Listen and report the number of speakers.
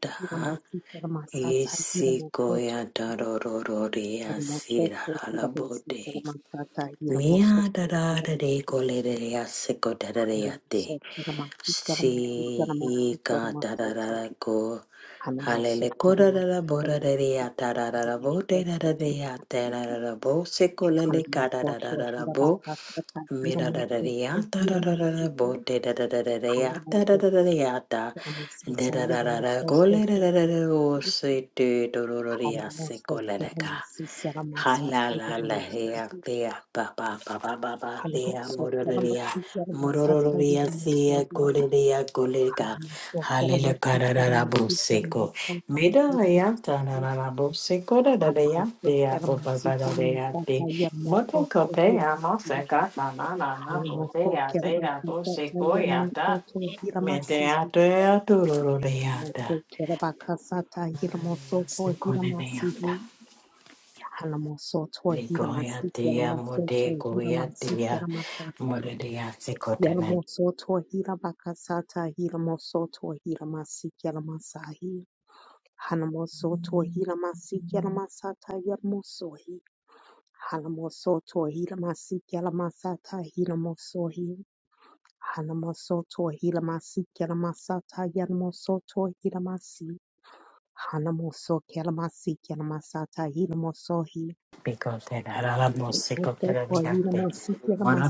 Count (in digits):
2